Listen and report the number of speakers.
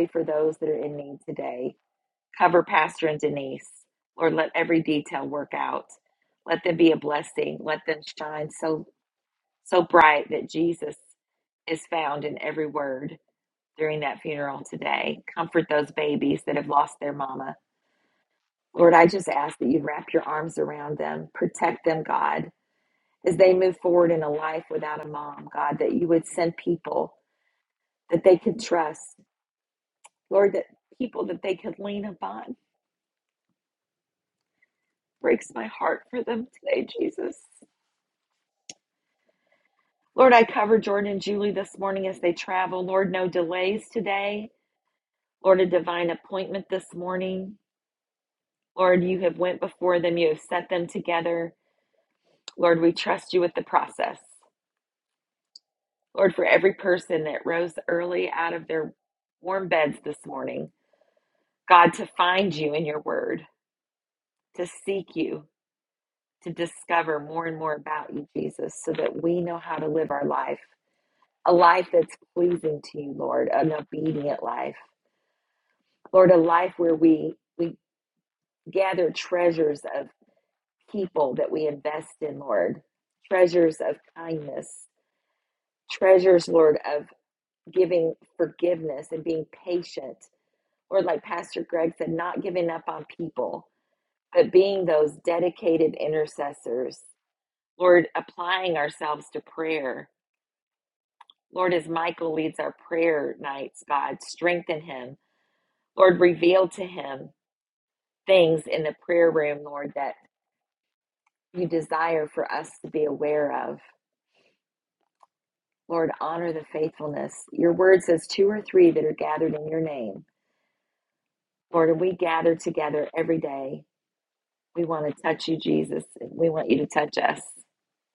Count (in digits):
1